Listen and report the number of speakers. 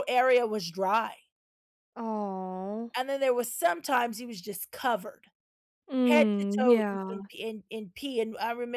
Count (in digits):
2